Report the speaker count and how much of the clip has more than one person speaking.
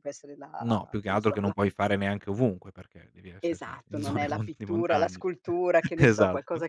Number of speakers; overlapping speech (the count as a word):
two, about 53%